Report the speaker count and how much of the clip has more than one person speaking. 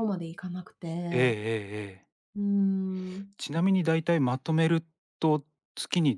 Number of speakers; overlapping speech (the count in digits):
2, about 4%